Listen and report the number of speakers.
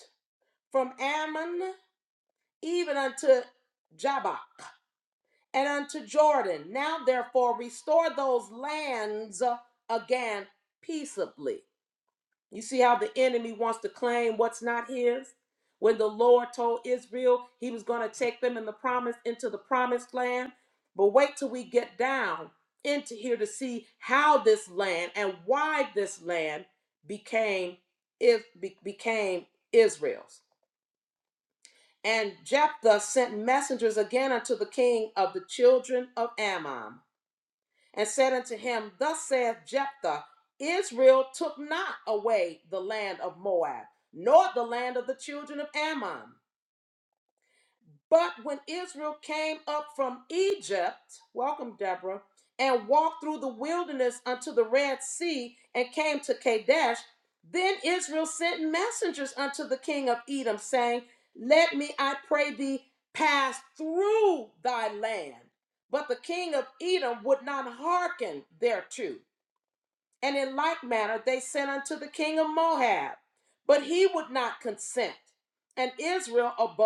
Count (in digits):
1